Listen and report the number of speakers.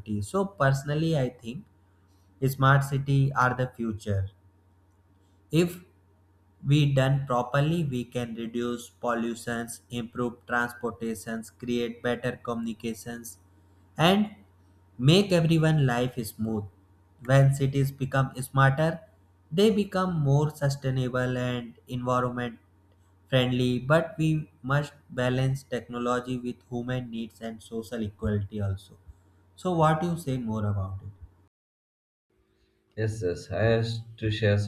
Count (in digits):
2